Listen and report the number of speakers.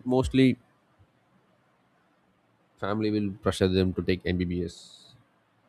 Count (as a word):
one